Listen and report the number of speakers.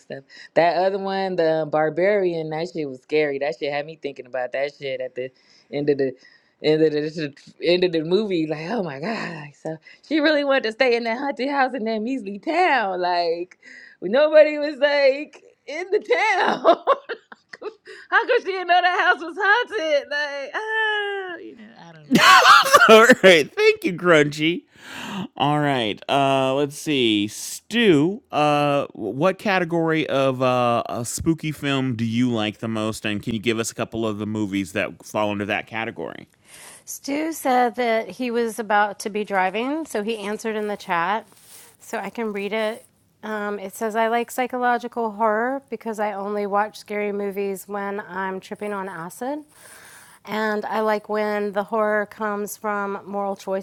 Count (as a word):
three